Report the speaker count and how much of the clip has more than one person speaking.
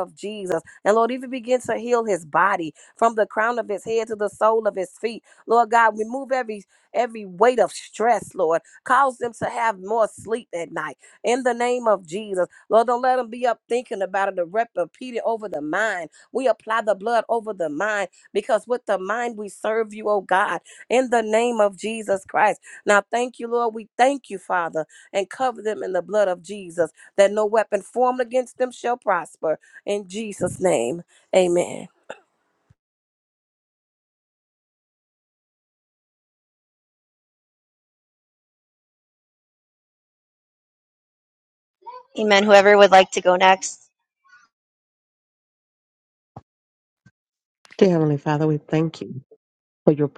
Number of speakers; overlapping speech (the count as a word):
three, no overlap